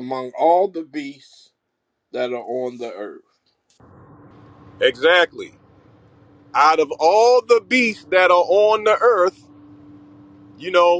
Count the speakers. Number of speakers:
2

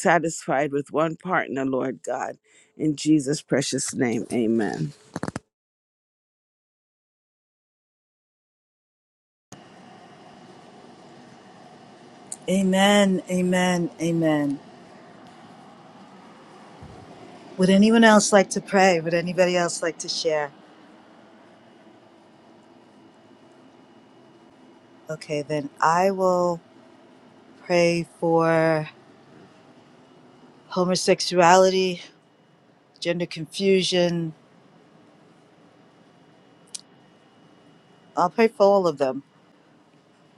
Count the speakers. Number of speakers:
2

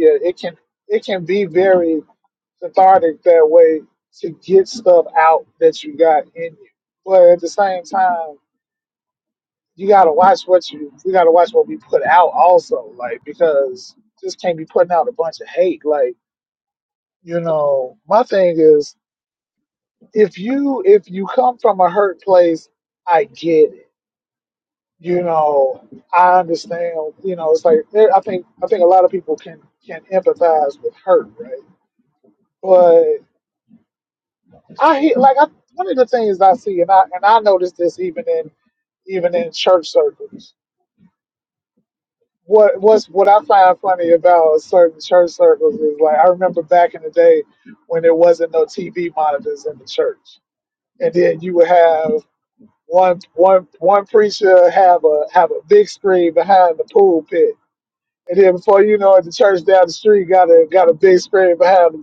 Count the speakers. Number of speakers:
1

